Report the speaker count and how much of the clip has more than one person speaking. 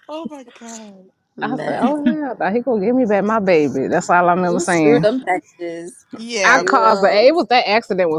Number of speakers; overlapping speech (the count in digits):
3, about 25%